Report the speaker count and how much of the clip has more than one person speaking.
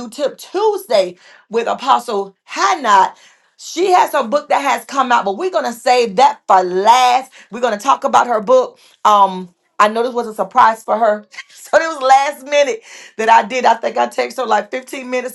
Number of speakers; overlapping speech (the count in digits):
1, no overlap